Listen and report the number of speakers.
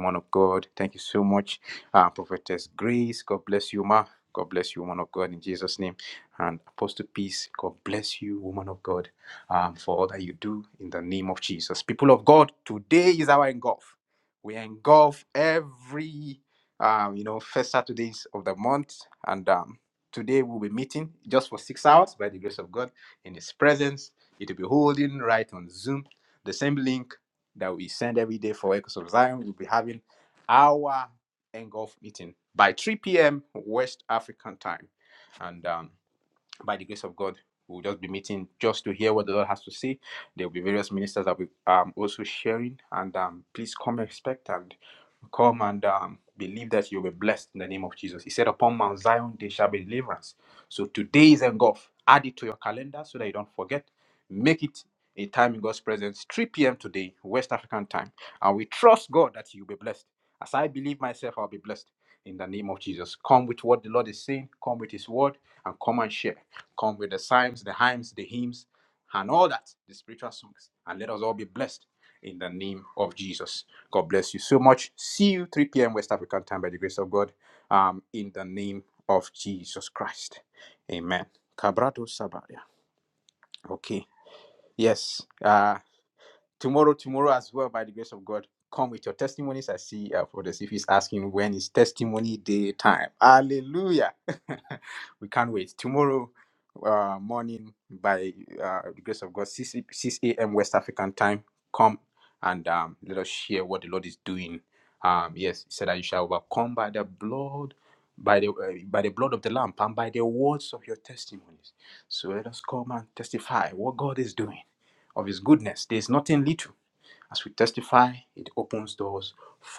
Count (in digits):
1